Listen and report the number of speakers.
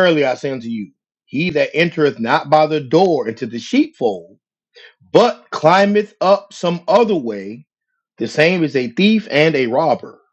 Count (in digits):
1